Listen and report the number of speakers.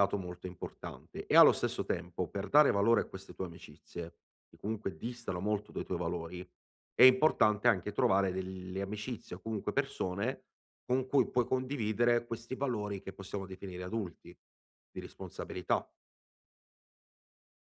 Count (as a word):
one